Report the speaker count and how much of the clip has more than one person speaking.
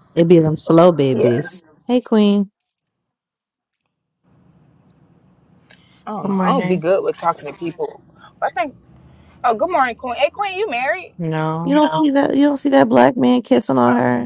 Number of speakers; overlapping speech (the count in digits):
3, about 9%